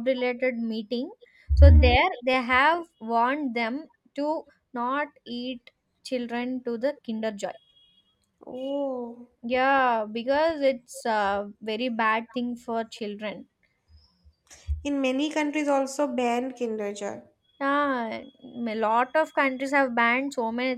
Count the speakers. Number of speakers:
two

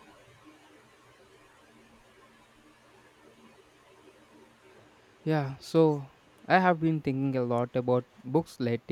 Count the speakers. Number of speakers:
one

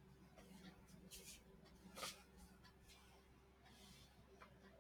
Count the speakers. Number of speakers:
zero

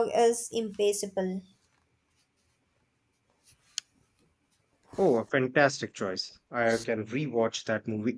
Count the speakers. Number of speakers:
two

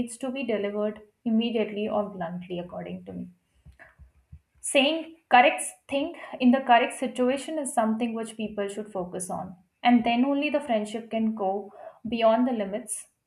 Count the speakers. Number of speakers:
one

